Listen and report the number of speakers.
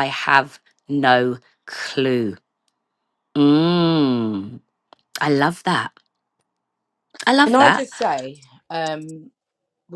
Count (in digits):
2